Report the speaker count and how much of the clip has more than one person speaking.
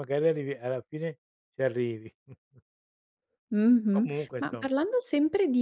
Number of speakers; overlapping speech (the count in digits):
2, about 13%